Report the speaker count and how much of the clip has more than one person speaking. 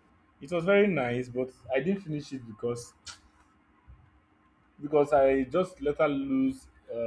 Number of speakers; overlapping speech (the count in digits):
1, no overlap